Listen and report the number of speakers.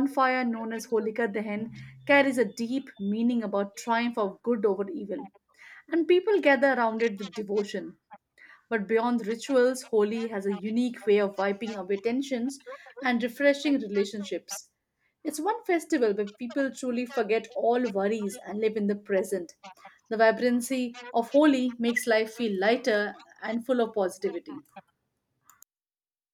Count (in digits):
1